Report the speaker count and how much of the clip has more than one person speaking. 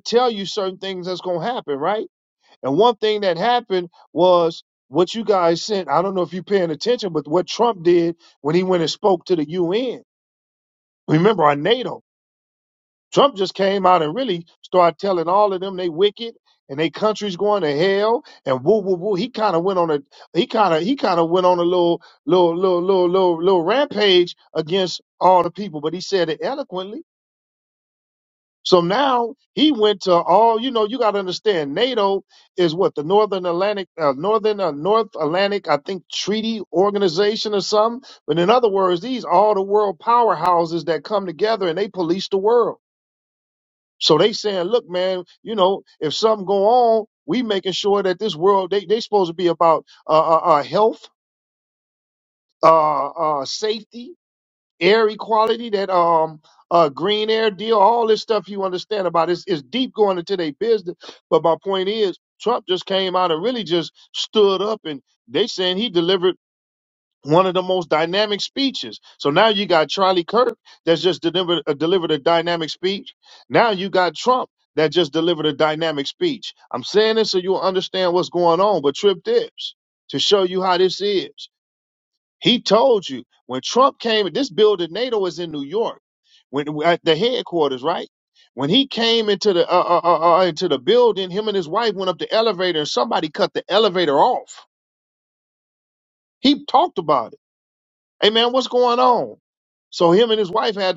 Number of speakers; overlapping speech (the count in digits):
1, no overlap